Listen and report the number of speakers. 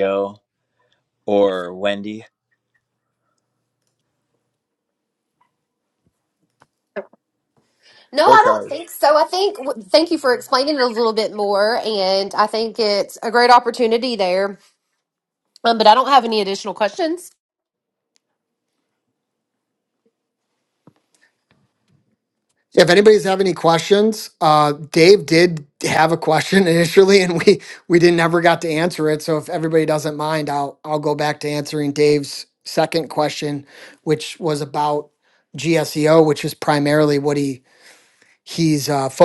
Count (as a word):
three